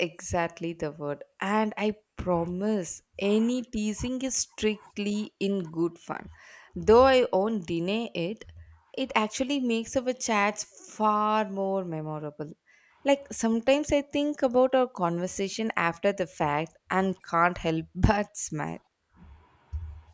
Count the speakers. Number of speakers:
one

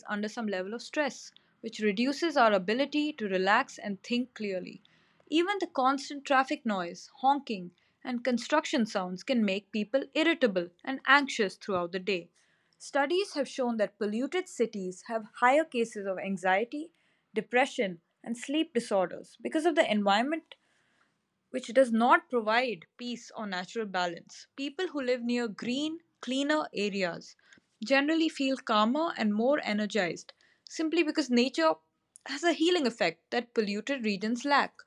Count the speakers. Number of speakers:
one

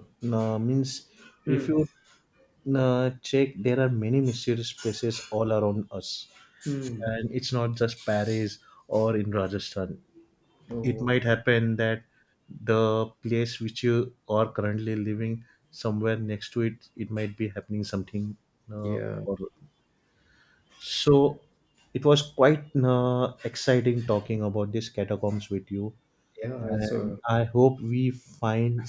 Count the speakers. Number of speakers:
two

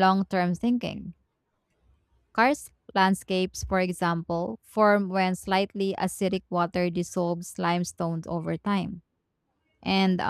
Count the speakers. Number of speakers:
one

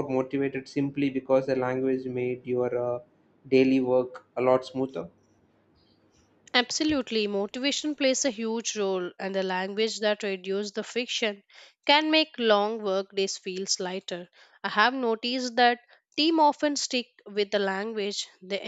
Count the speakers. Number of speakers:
two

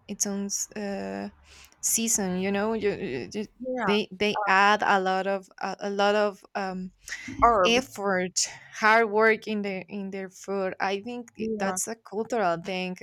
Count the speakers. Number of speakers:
two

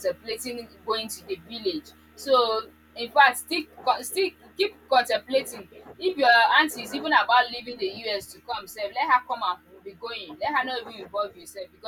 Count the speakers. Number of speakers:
one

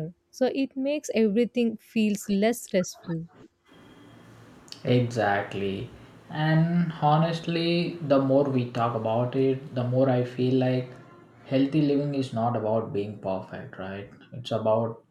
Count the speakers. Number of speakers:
two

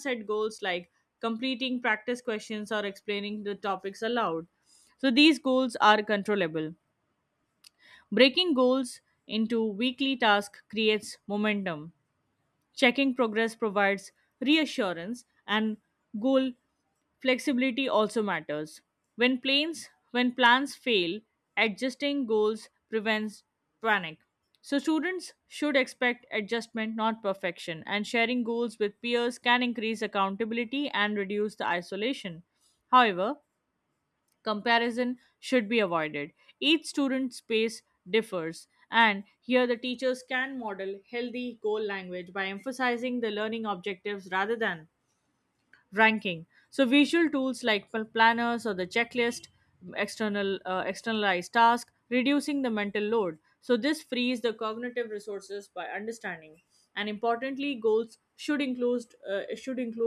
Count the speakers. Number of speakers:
one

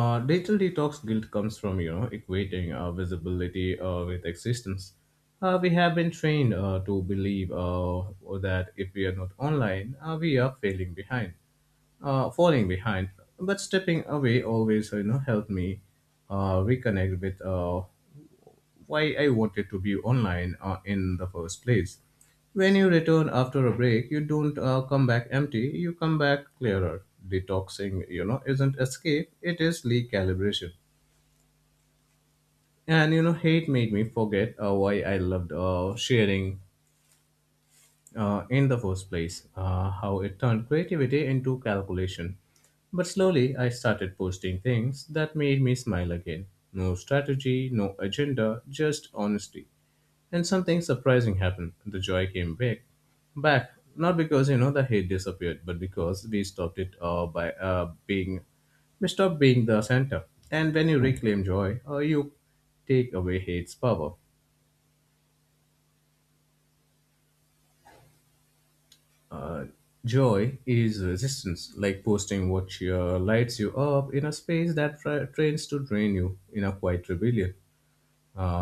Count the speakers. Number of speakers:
one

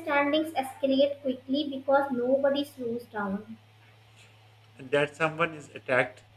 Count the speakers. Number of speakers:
two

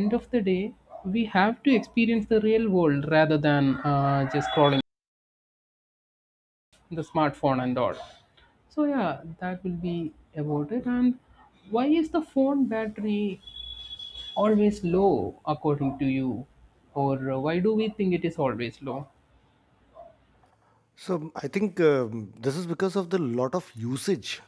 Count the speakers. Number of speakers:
two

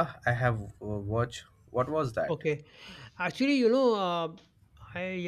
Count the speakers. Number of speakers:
two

